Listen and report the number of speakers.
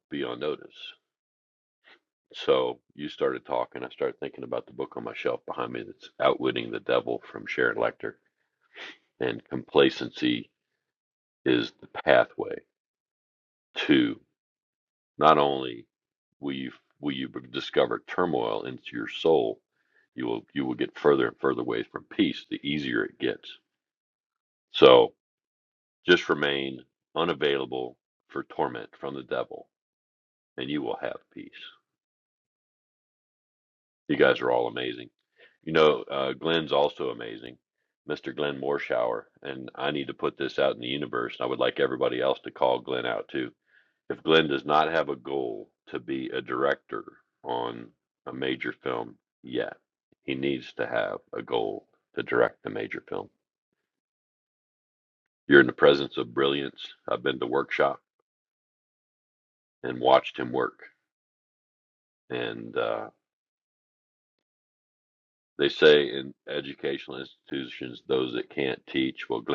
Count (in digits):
1